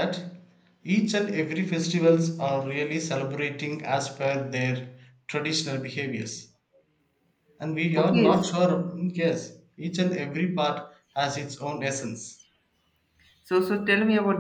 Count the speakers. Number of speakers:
two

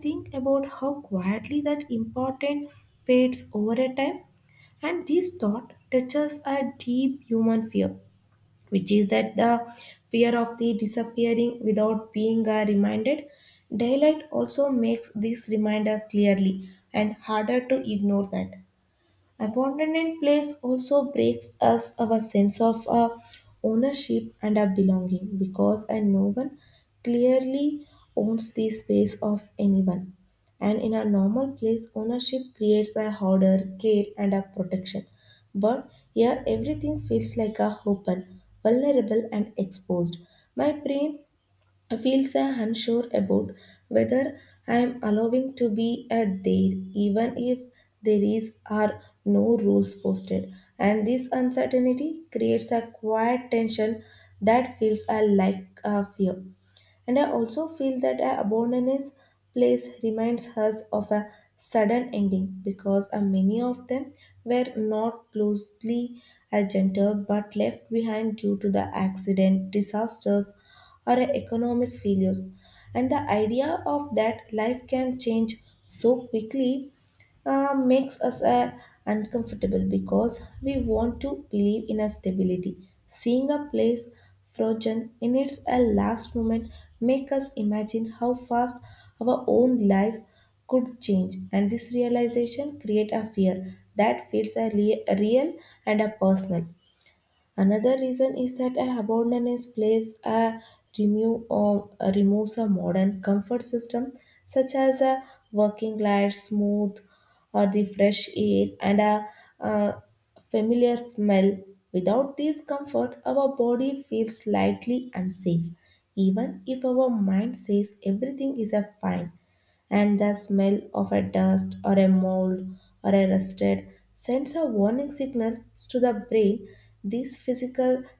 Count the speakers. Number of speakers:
one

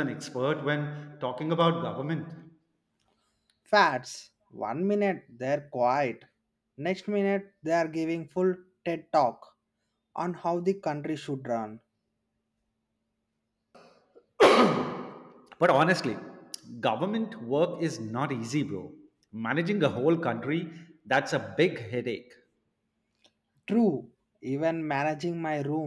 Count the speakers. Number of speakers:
two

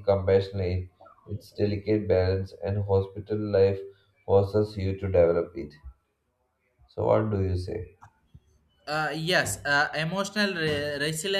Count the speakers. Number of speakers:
two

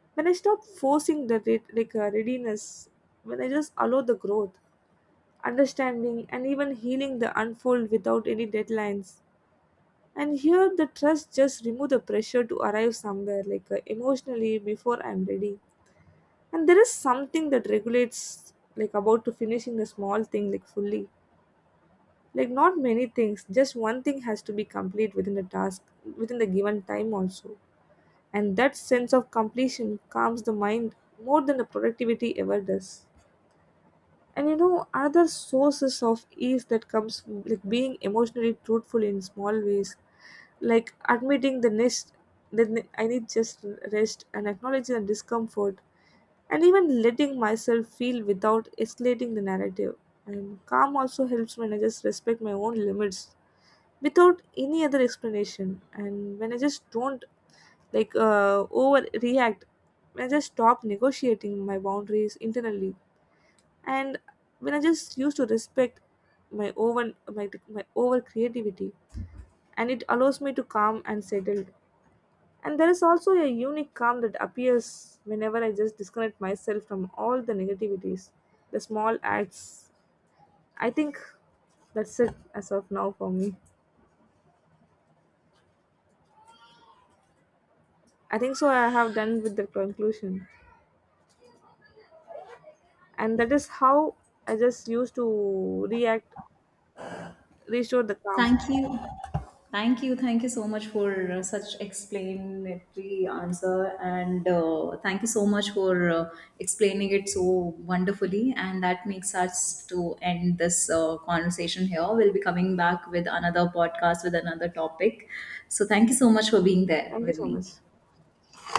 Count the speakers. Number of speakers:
two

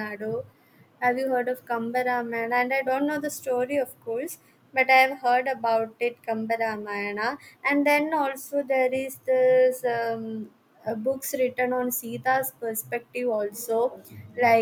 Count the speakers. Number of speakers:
one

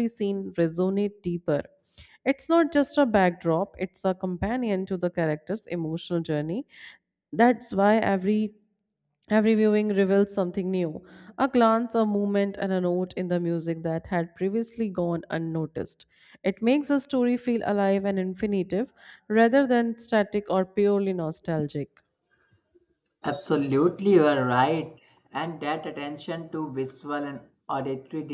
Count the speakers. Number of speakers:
two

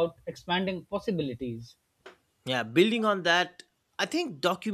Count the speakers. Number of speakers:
two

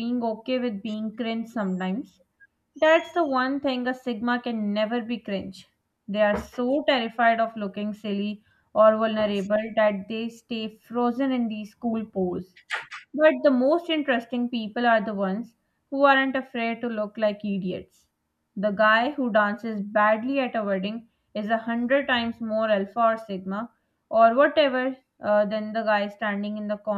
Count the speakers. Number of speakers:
one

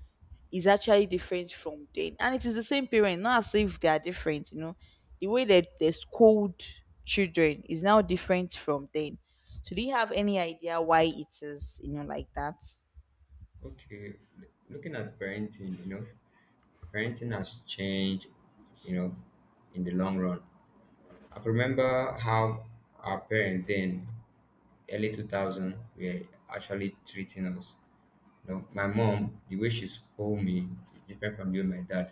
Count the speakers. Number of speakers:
two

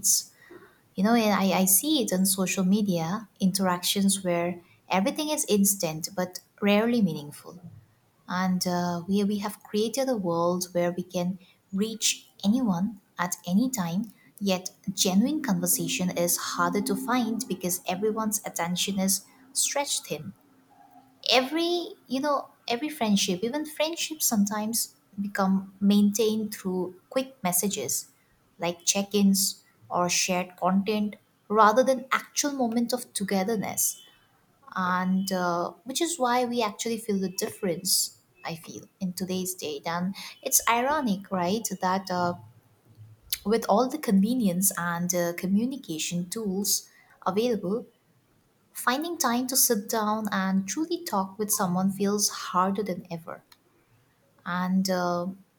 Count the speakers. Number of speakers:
one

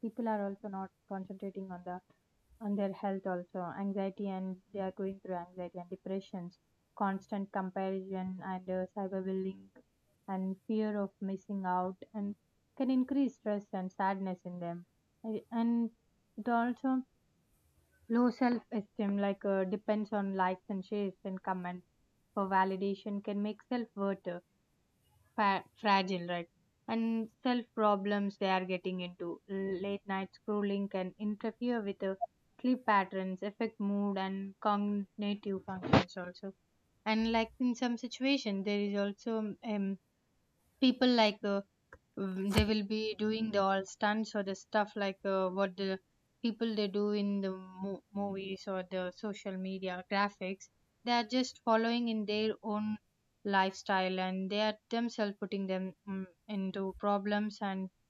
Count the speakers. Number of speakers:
one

